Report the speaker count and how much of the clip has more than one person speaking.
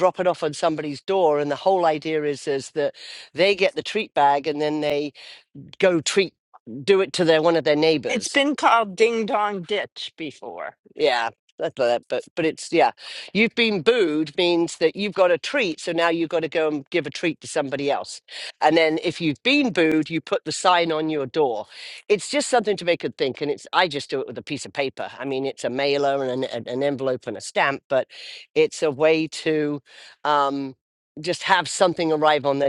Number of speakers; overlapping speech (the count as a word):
two, under 1%